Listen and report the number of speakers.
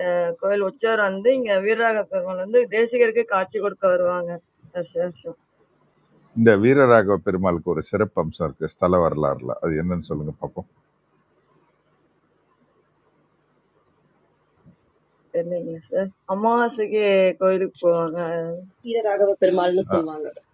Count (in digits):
3